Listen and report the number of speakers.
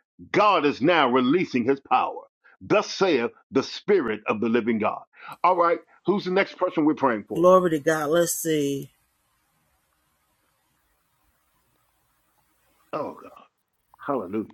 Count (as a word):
two